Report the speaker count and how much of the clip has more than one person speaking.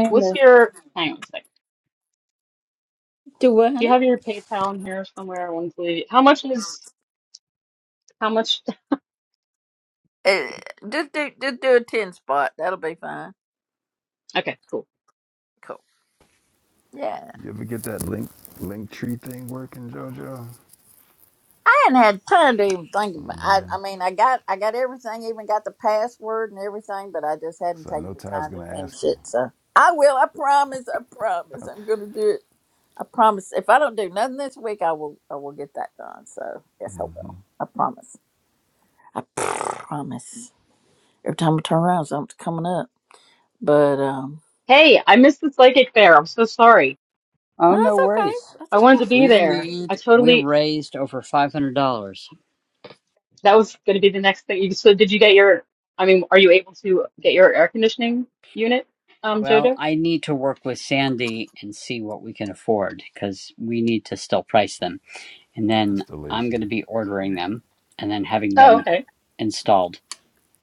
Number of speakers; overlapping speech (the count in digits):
4, about 8%